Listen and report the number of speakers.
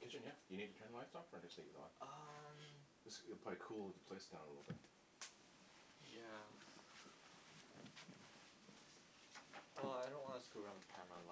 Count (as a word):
two